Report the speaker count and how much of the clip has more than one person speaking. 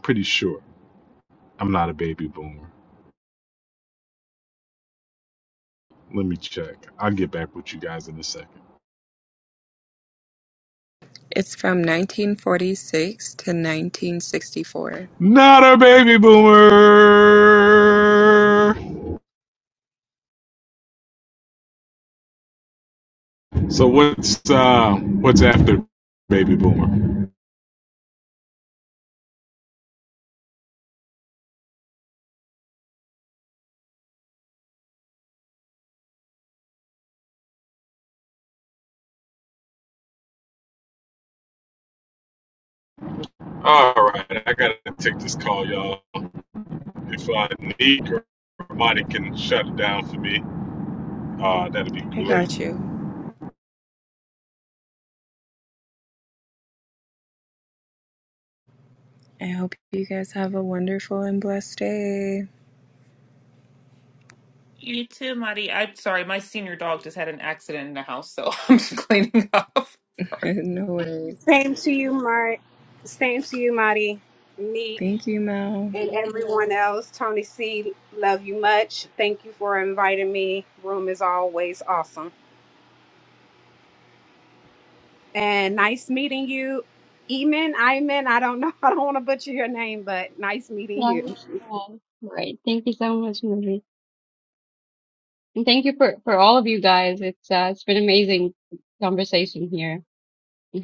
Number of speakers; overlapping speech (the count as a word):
five, about 1%